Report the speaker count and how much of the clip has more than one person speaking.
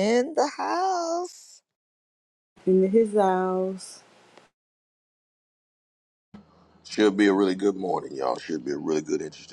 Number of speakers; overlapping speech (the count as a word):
three, no overlap